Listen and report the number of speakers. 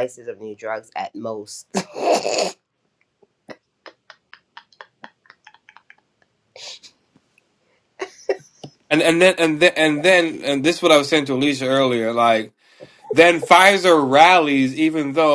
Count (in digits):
2